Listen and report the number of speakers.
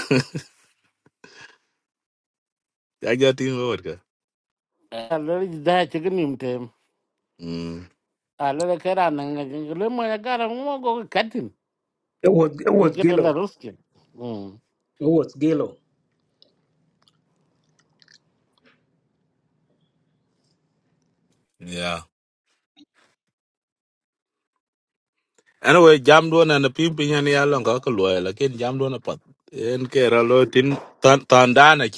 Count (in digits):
3